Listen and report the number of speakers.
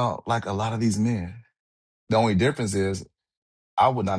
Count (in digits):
1